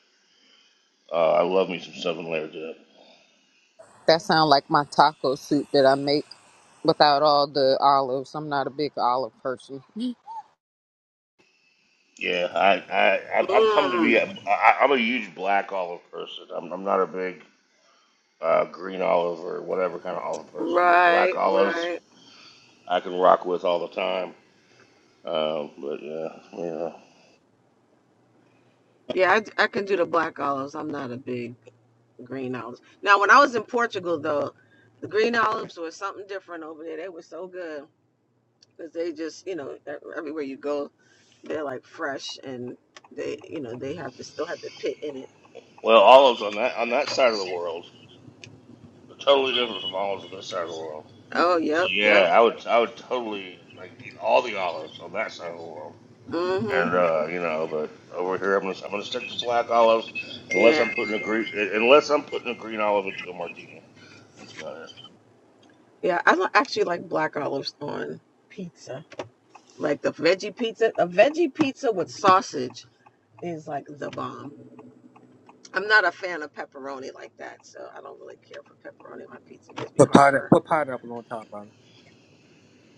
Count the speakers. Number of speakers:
four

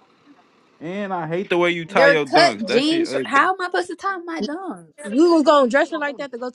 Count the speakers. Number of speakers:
three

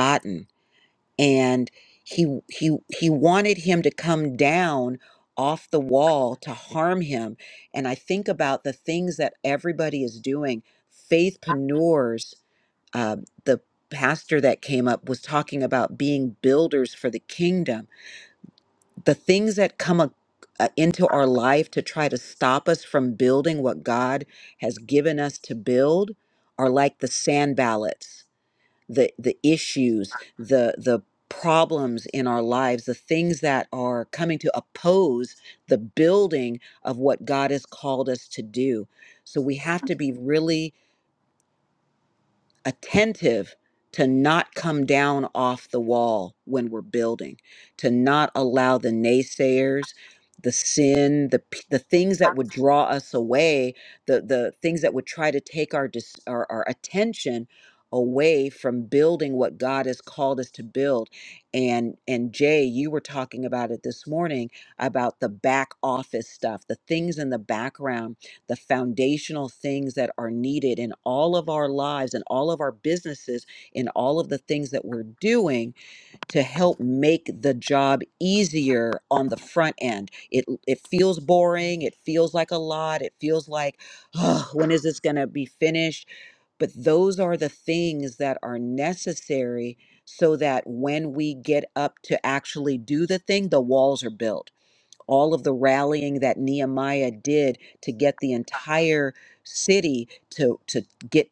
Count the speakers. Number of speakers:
one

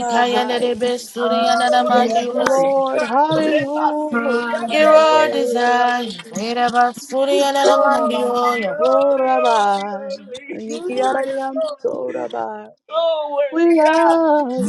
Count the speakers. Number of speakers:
four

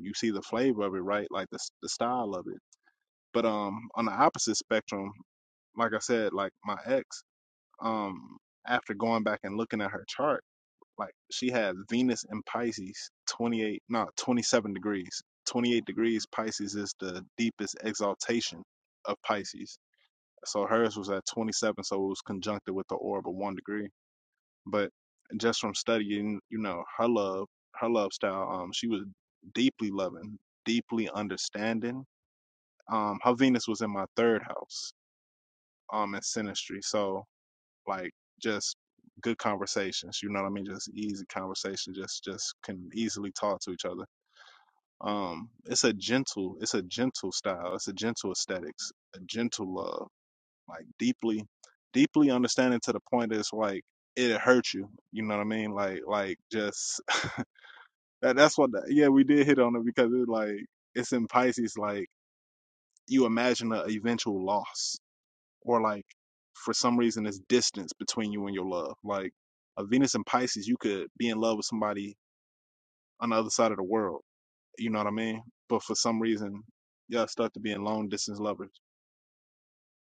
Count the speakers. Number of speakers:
one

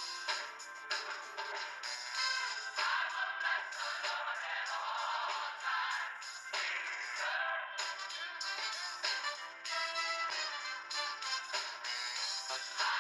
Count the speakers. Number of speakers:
zero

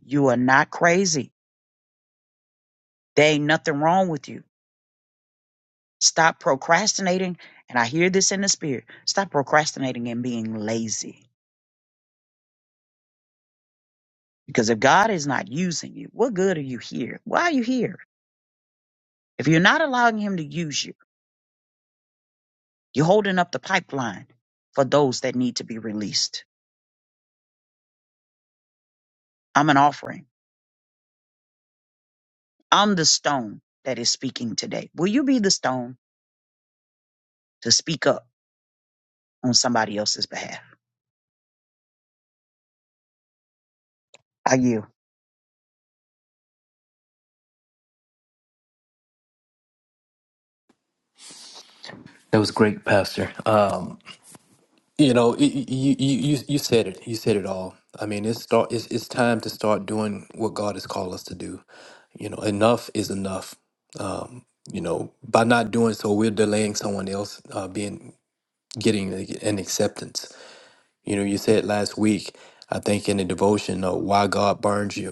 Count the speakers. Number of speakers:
two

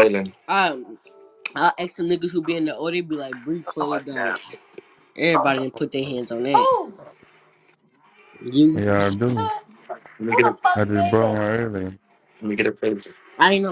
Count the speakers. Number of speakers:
four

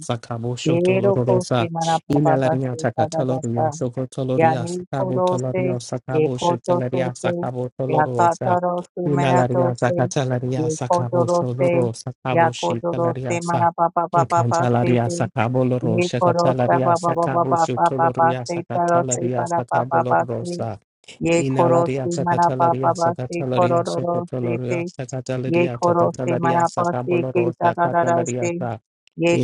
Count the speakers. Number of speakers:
two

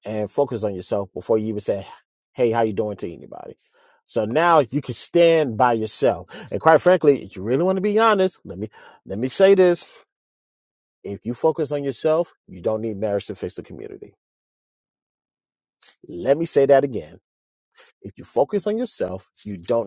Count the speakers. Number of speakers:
one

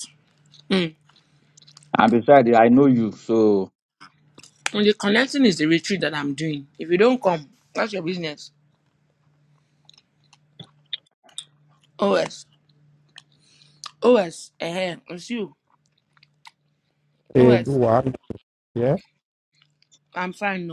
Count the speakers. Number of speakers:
three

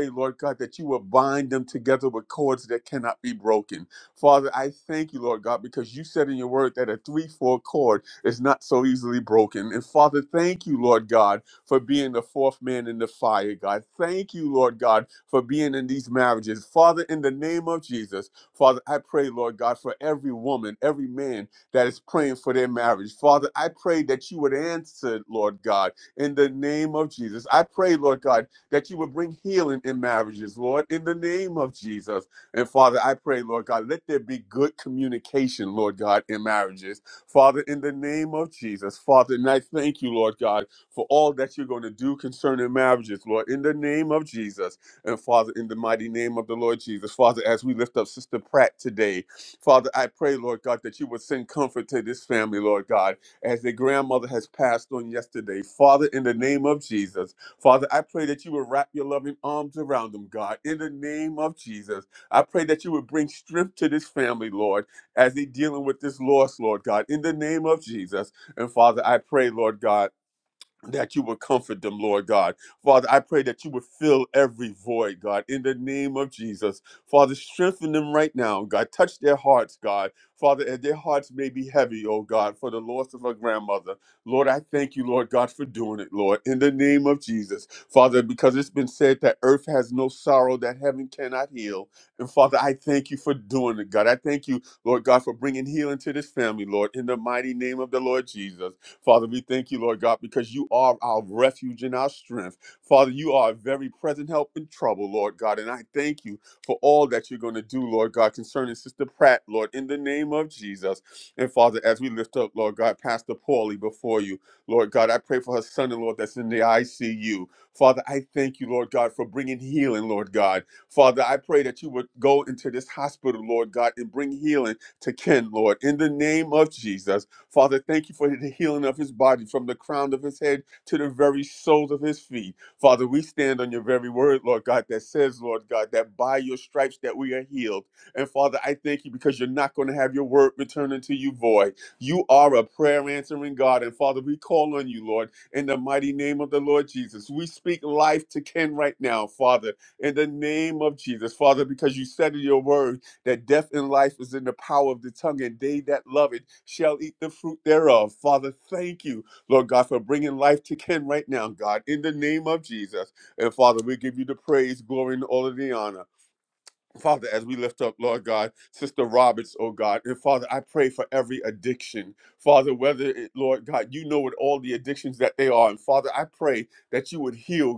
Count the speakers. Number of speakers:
one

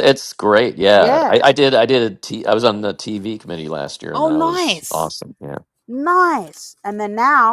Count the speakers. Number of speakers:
two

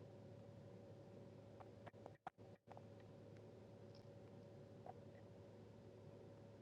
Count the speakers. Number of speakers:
zero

